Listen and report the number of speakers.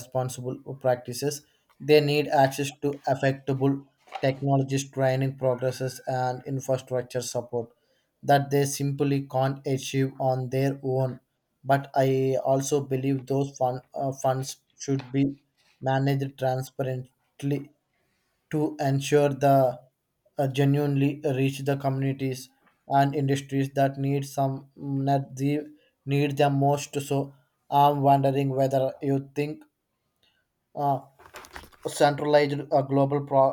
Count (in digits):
1